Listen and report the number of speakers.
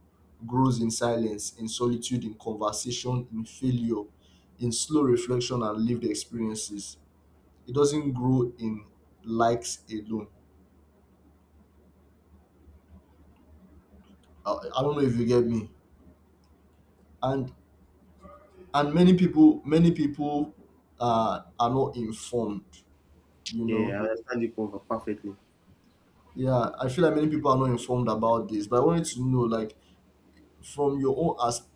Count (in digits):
2